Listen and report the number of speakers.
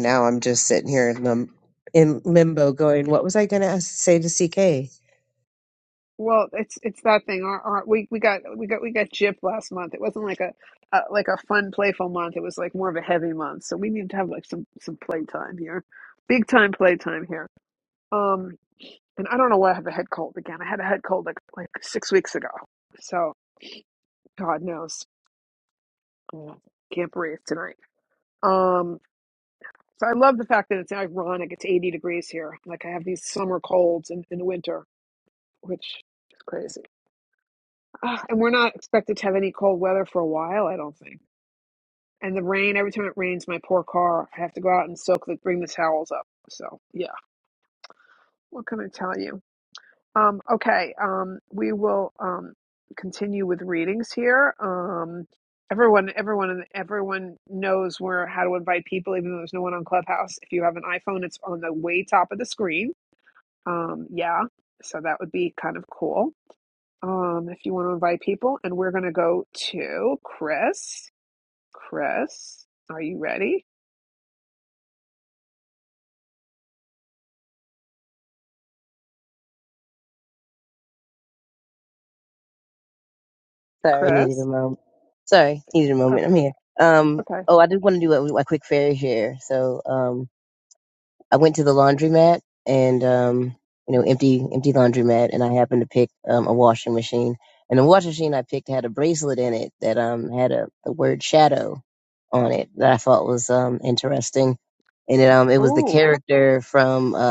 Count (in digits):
3